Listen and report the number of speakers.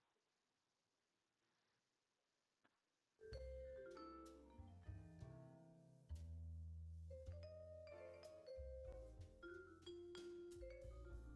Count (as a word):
zero